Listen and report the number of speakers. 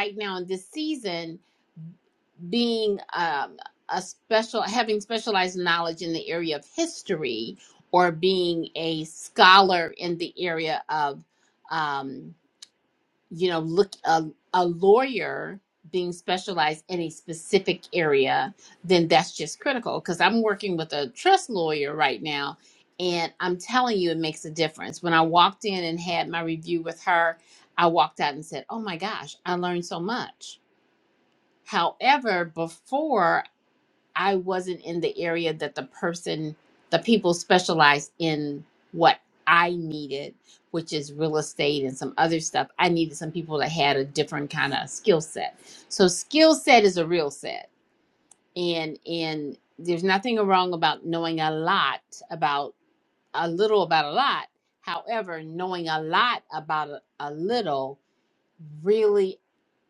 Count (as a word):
one